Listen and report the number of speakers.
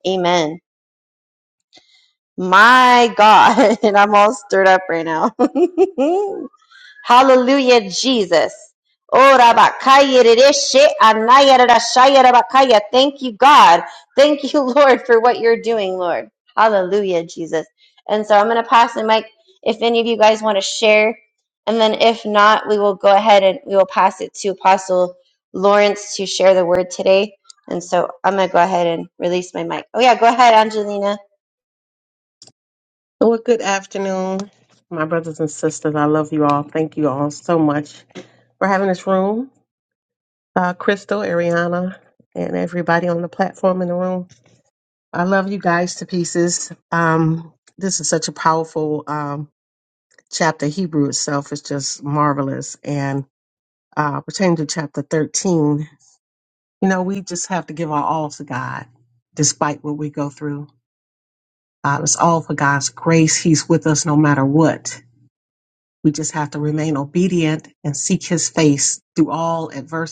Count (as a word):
two